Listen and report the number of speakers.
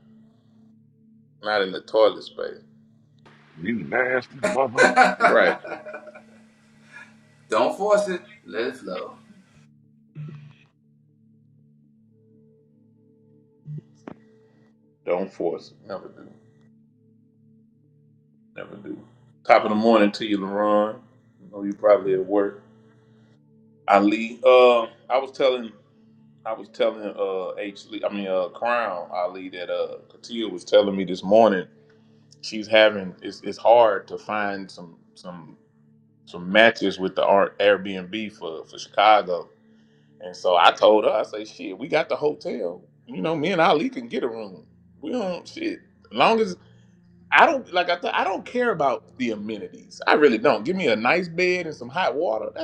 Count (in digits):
3